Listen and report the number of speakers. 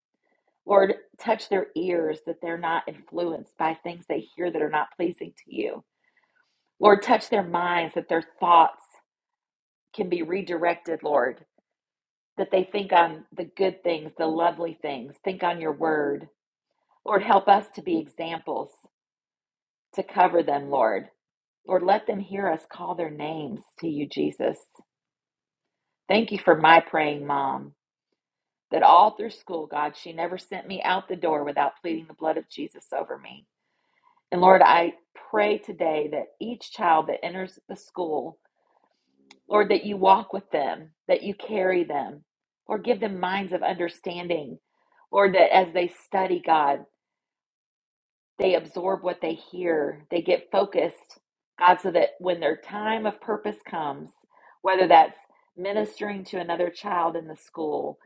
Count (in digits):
1